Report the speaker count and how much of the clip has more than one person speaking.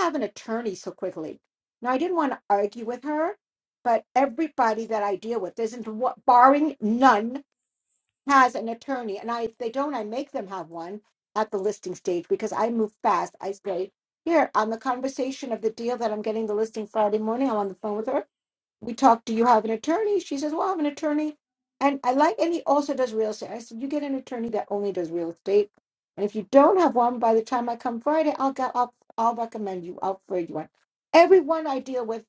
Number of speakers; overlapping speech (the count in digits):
1, no overlap